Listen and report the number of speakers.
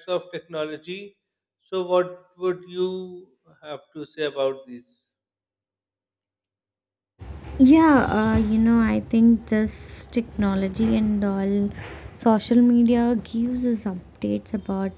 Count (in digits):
2